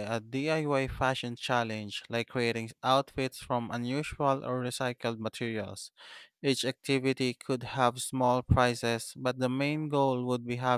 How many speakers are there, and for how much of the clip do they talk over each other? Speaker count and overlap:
1, no overlap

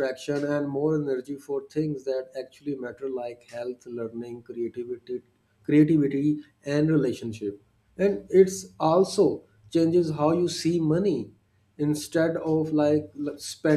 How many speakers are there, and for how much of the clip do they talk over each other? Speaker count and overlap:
1, no overlap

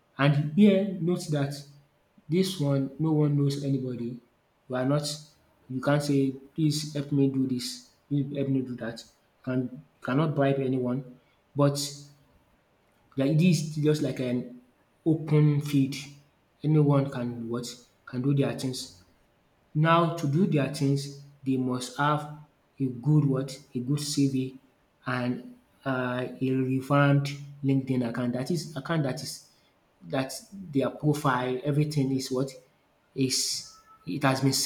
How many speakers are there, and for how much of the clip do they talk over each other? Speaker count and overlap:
1, no overlap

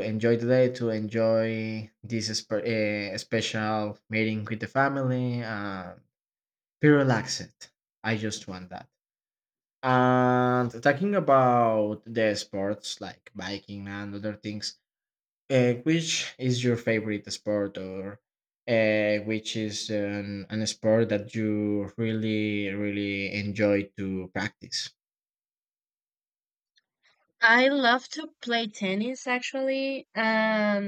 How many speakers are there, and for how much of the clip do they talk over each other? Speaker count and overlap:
2, no overlap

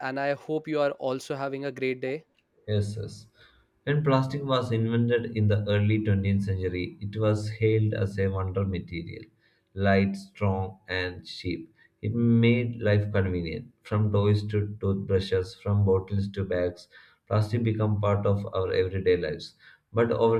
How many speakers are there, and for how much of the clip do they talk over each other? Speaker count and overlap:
2, no overlap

